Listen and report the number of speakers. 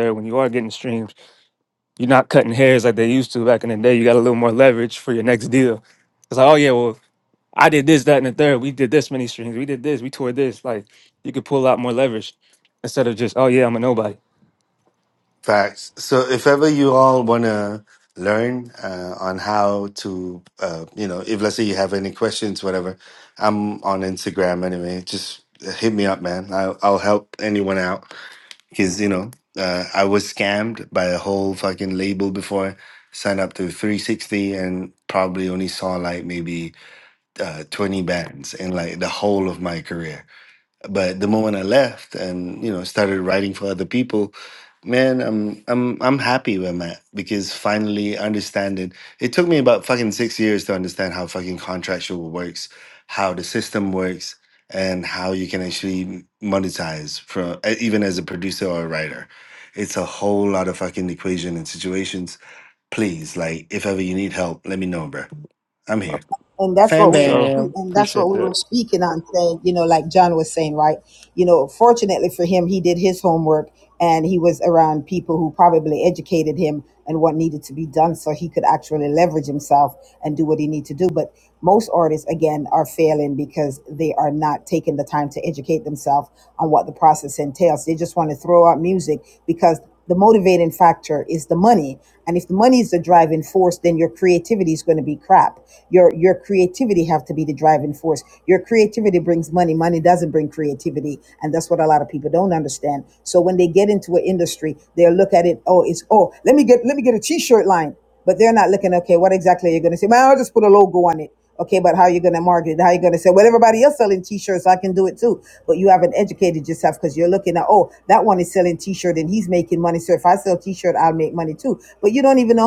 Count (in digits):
3